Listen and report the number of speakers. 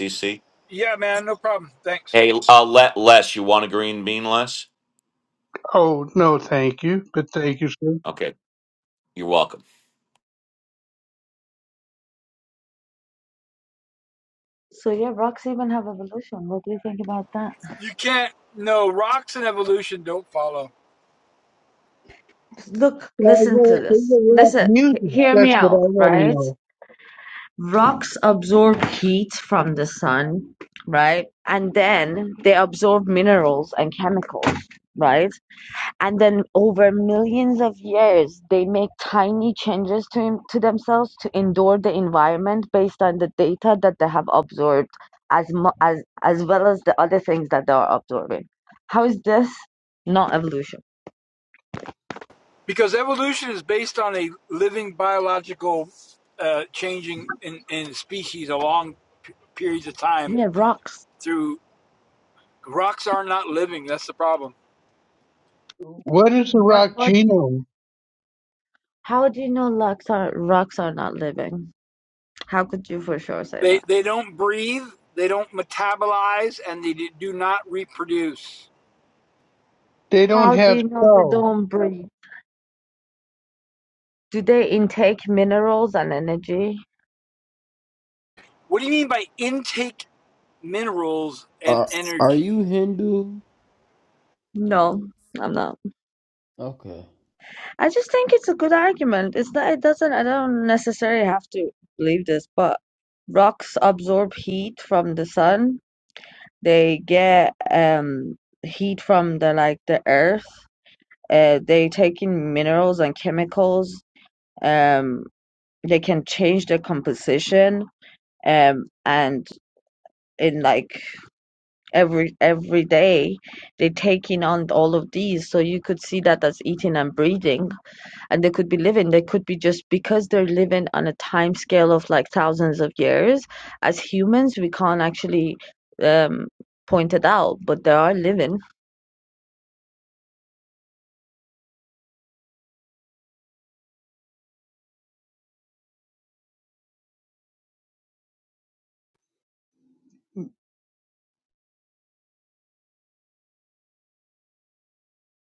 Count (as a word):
five